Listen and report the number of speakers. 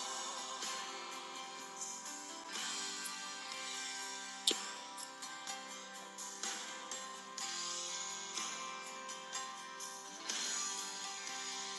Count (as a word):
zero